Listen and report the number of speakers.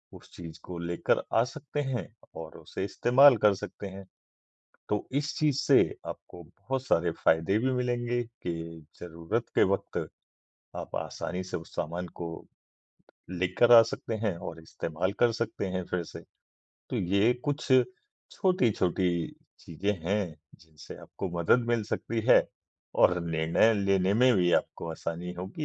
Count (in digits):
1